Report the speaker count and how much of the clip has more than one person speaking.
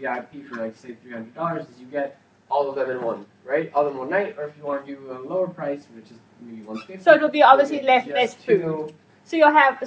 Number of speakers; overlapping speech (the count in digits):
2, about 18%